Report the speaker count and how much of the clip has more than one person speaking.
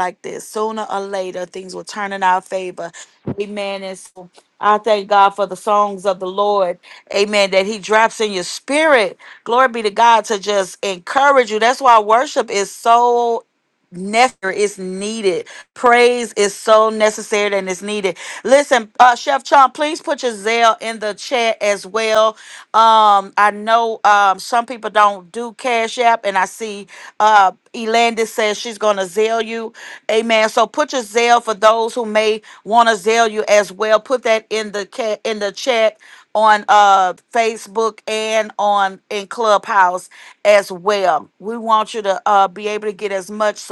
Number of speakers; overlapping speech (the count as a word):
one, no overlap